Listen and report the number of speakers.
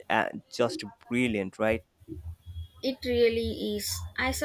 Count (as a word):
two